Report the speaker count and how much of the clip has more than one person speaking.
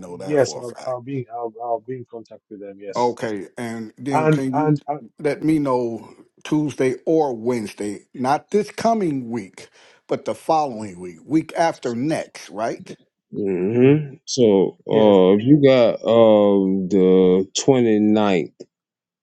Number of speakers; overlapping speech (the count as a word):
three, about 10%